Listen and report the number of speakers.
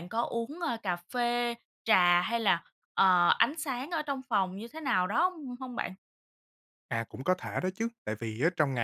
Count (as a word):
two